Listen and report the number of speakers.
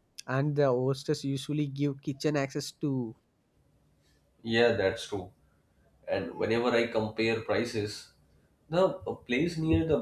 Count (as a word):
two